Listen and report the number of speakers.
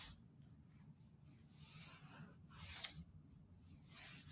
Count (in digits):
0